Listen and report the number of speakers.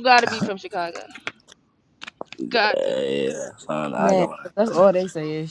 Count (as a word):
three